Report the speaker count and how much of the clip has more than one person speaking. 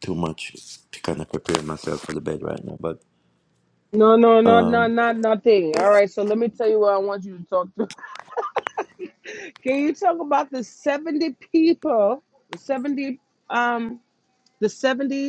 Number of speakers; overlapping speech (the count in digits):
2, about 3%